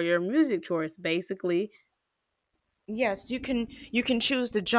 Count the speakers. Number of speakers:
2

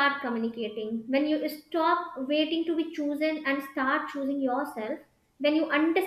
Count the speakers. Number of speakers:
1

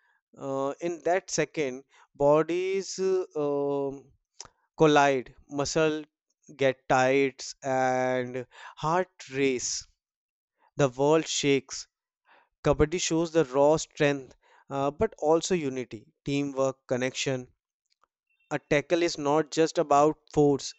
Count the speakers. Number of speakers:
1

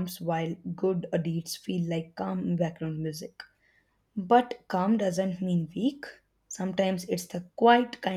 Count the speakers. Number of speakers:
1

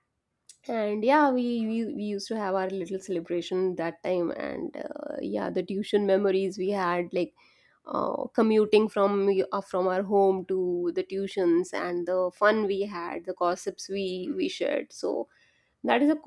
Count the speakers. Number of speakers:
1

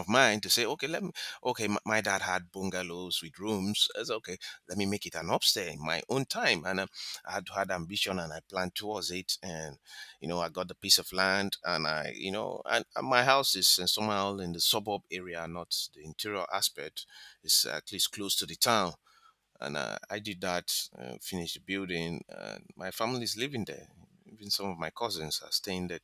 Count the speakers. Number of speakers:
1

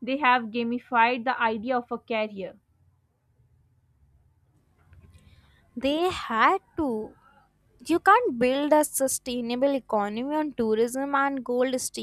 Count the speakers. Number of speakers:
2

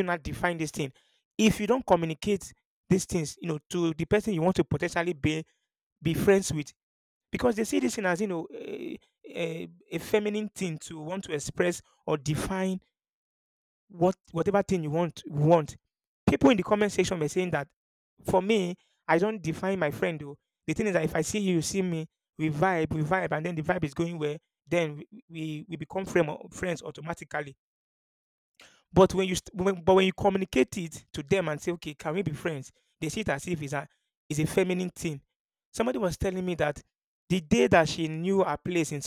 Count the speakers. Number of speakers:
1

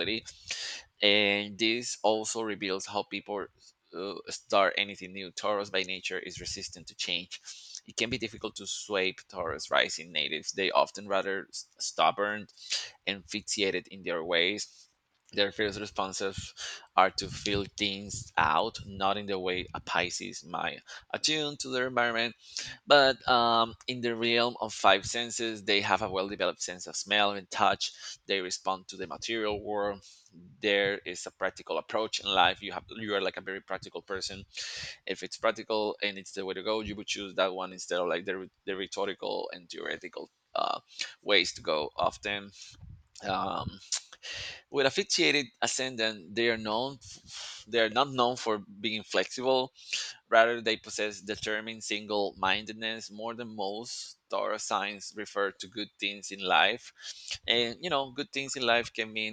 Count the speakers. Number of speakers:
1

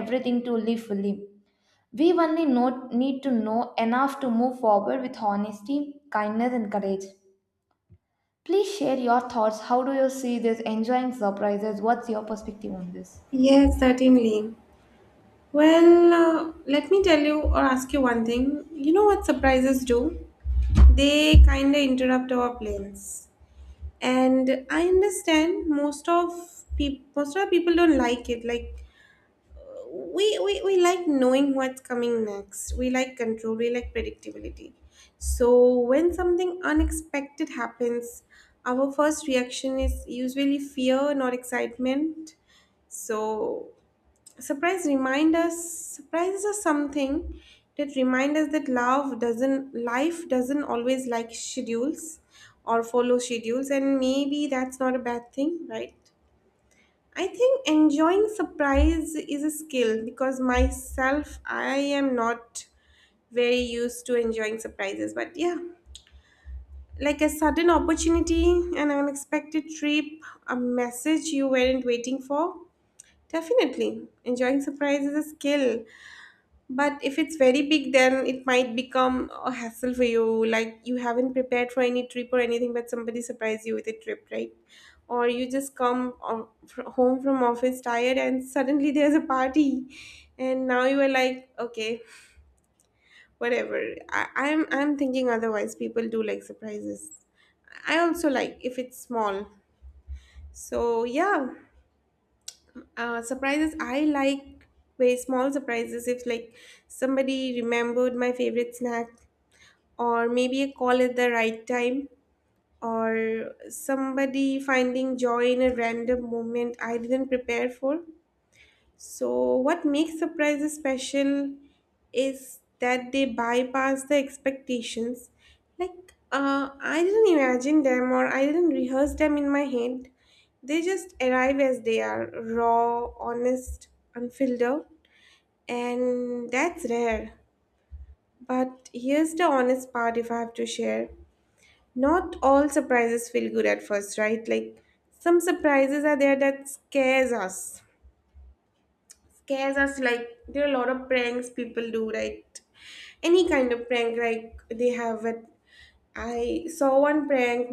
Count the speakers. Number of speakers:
2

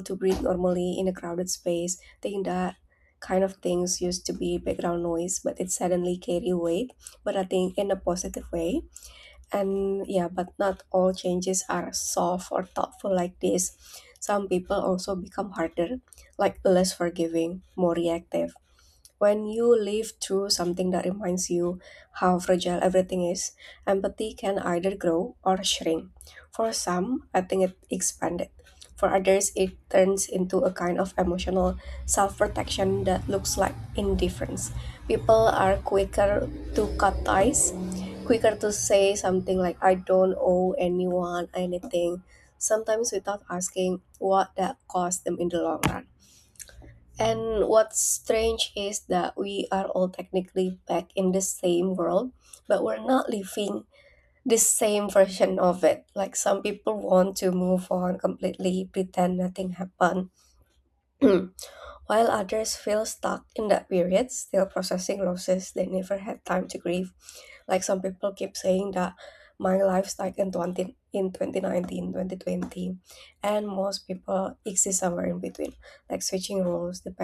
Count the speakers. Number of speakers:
1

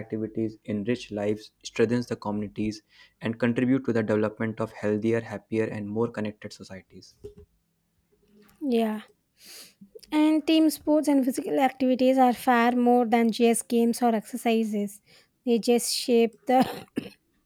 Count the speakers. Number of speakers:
2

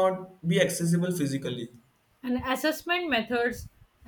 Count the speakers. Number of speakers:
2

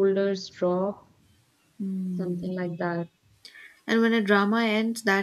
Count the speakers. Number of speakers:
2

